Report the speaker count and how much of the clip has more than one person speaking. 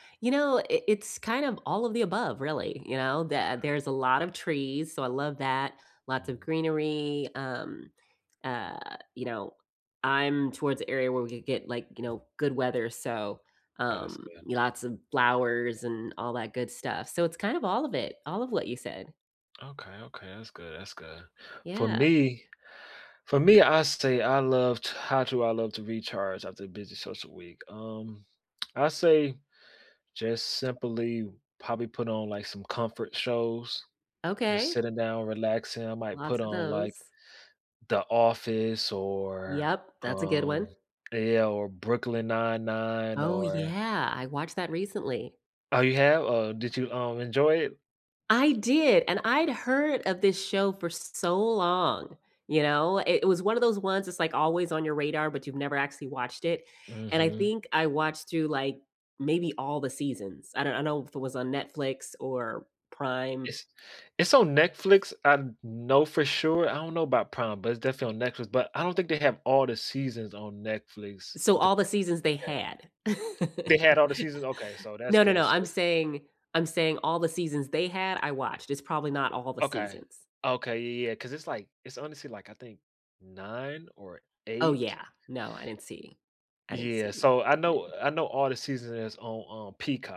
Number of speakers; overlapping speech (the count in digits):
2, about 6%